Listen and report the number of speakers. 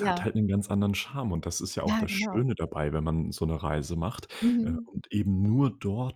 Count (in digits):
2